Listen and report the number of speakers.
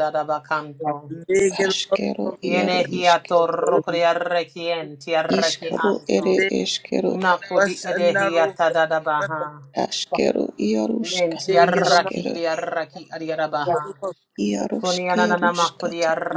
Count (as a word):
three